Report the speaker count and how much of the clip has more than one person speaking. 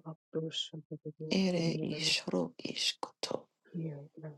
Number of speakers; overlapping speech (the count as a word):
two, about 19%